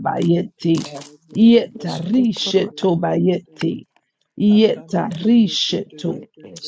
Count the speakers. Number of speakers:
3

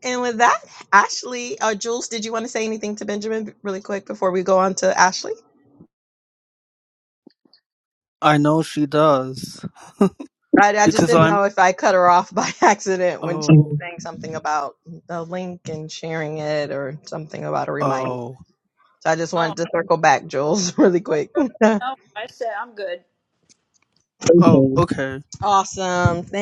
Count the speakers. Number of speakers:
3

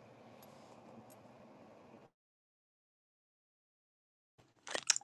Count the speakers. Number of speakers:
0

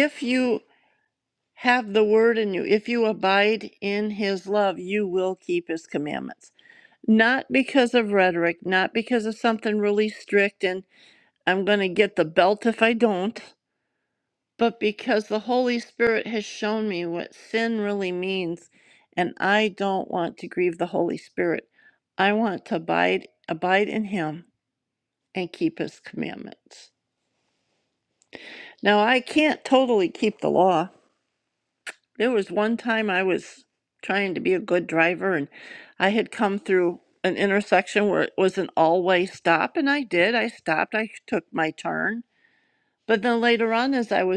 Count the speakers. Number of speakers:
1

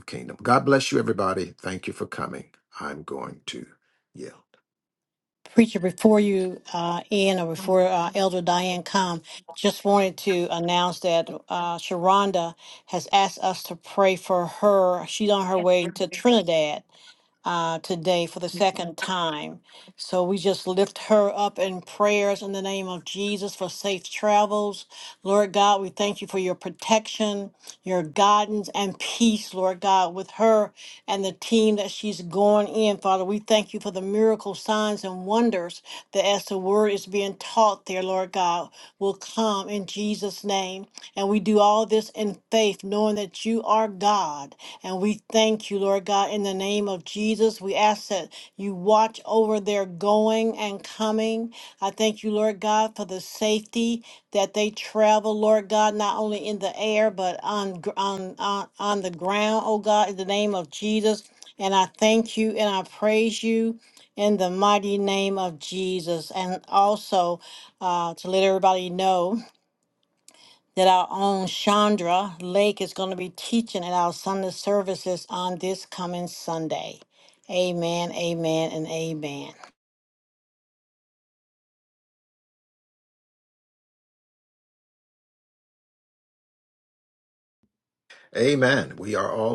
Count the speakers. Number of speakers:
2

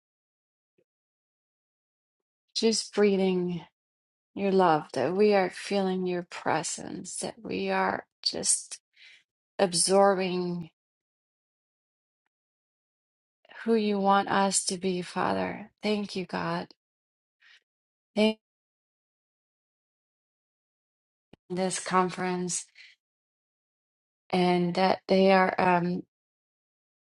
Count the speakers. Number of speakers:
1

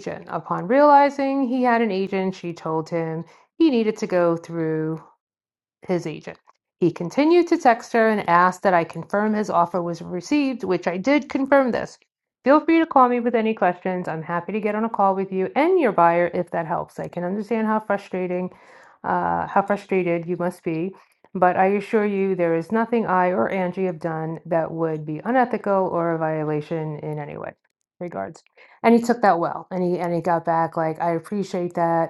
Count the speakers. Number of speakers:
1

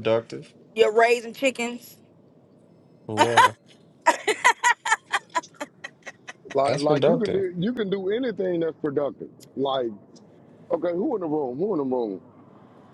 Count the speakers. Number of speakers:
3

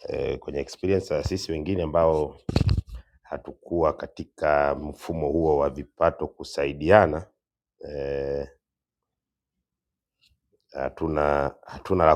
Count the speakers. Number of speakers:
1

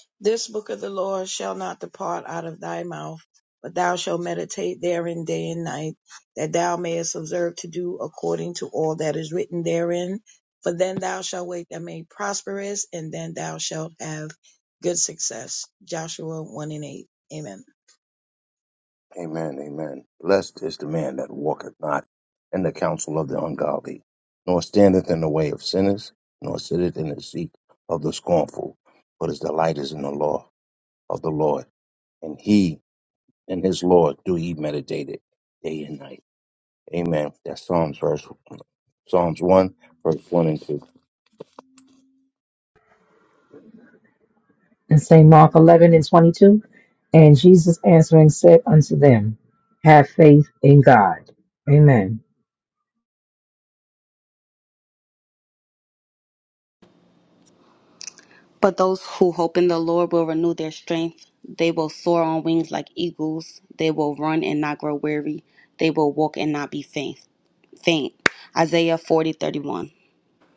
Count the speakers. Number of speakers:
4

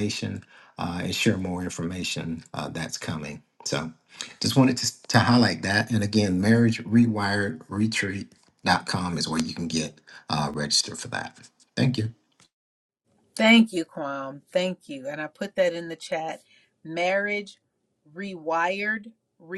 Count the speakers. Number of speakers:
2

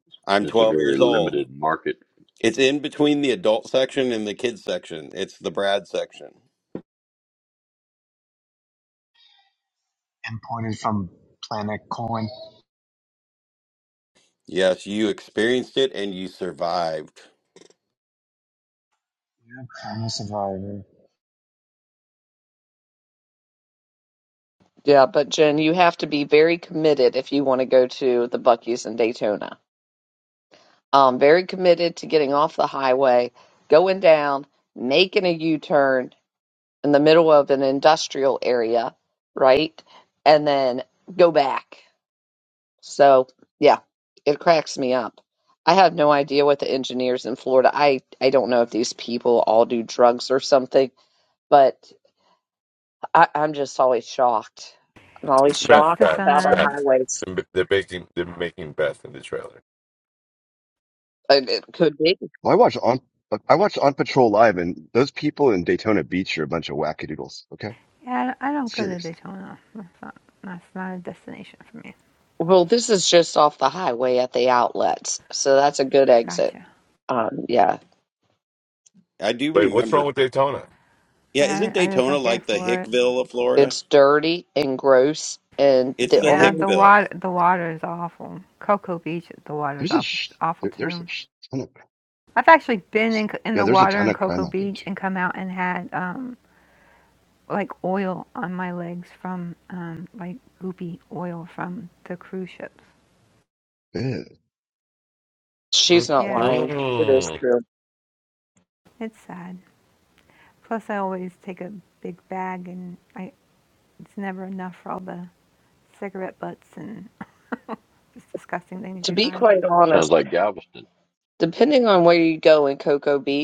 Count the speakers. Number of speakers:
7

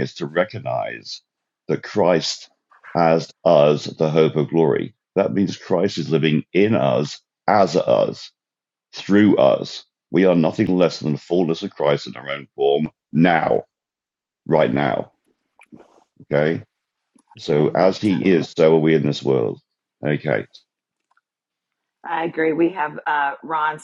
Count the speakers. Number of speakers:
2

